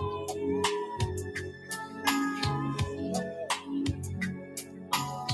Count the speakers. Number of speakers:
0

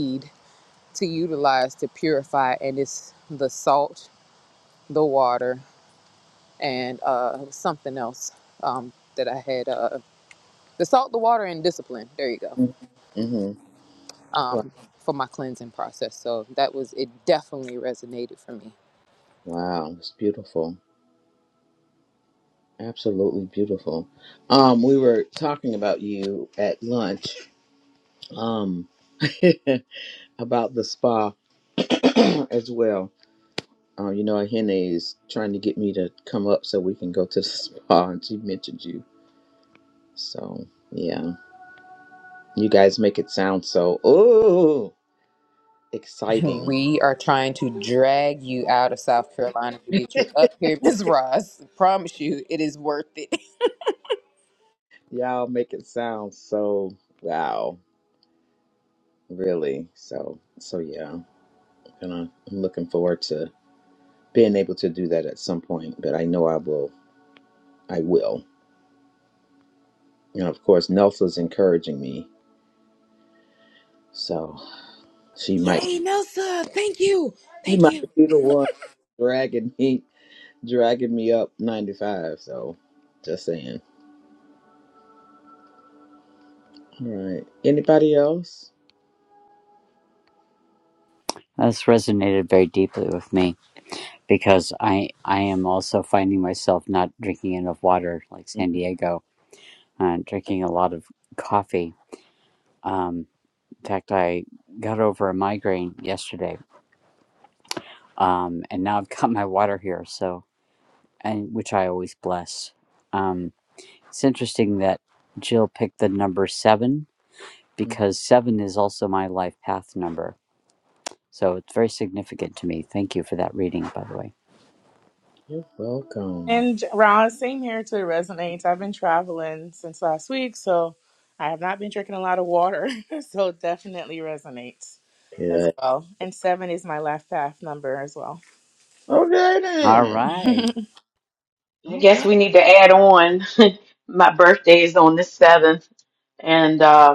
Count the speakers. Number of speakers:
5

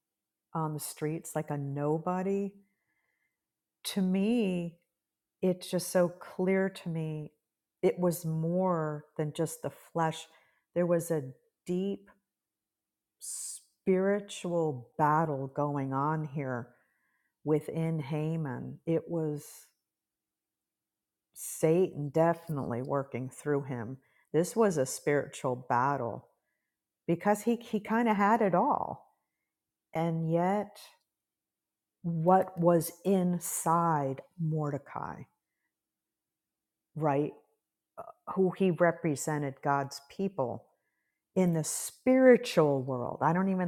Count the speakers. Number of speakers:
1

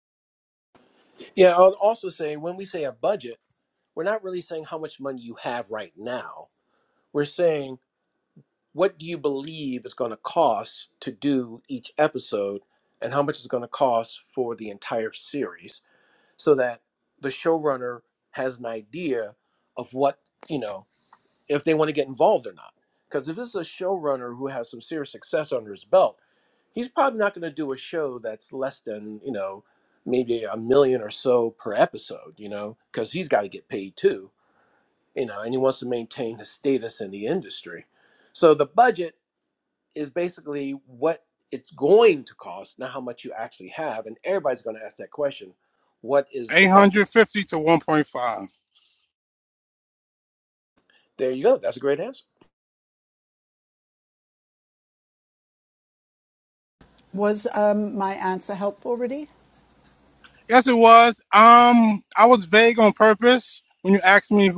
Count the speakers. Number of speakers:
3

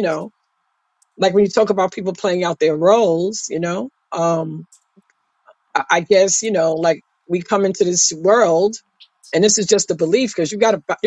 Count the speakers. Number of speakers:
1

